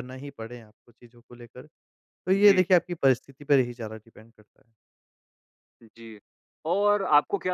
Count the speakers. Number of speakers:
2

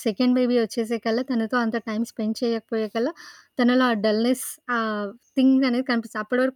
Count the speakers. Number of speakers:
1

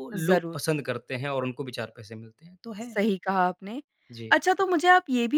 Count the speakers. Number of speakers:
2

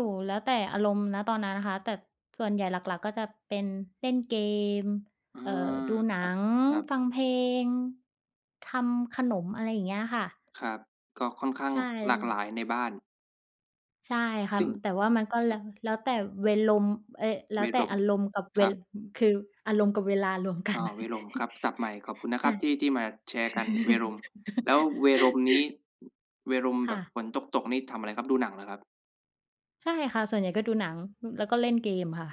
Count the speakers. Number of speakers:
2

